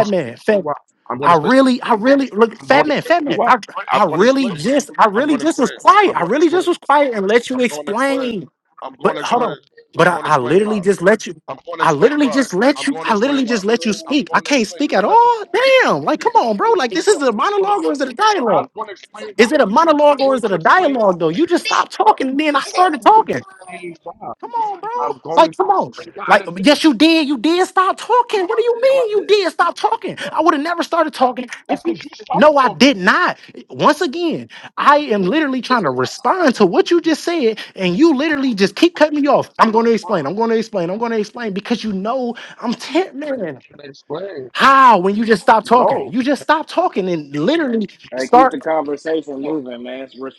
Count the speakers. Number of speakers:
3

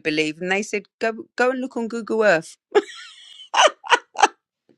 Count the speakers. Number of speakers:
1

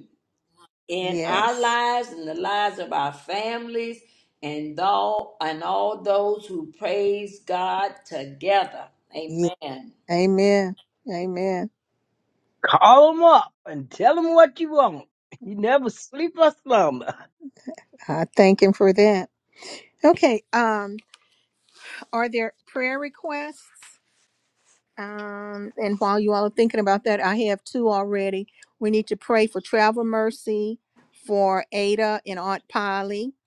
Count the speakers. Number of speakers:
3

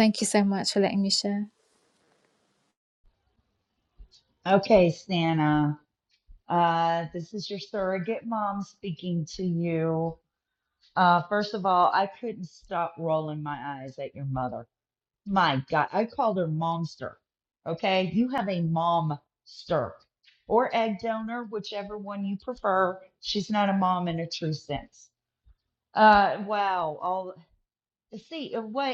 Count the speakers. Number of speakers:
2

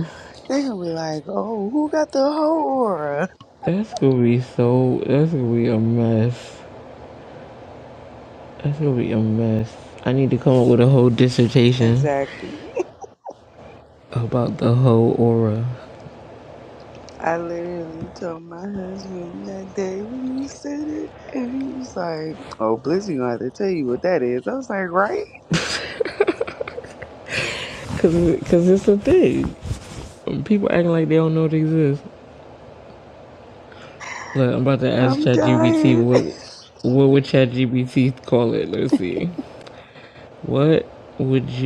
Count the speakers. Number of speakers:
2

